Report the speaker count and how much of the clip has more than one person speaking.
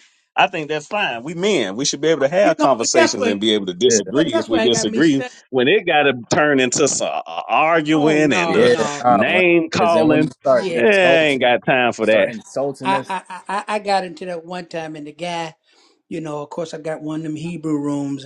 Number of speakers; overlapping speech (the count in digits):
3, about 31%